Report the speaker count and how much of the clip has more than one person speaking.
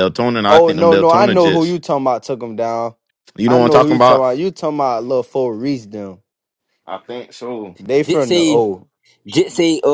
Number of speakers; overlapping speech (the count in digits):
3, about 25%